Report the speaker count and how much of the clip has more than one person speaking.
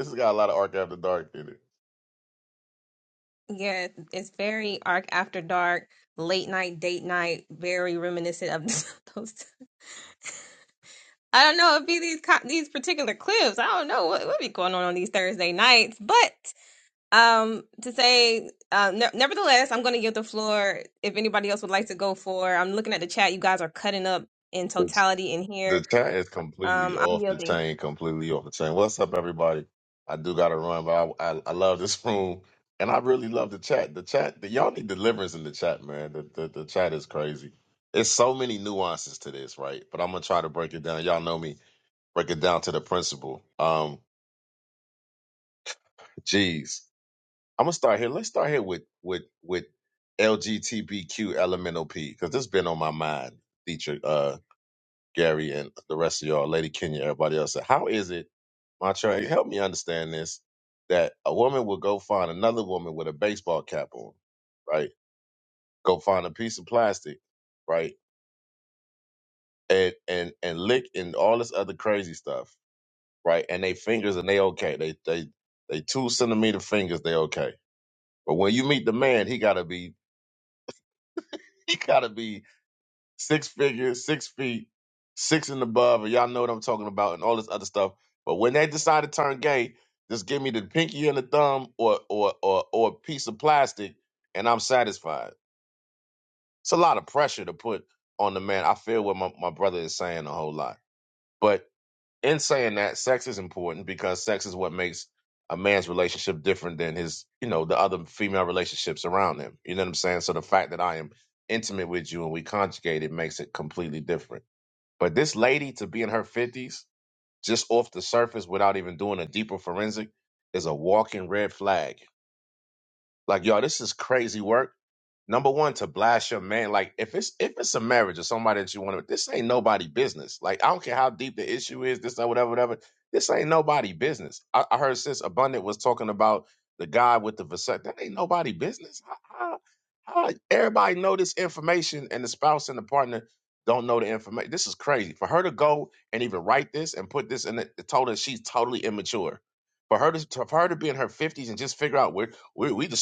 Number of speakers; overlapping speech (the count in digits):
2, about 1%